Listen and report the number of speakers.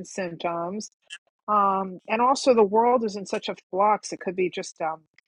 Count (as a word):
one